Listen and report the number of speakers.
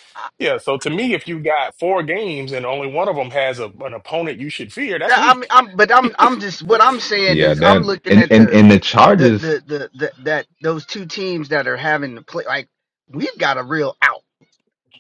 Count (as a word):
three